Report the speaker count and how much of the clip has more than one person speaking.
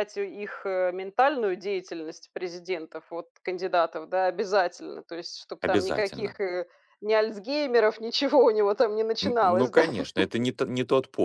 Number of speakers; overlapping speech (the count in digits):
2, about 12%